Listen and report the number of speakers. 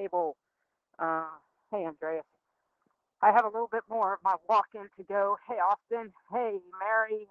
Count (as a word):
one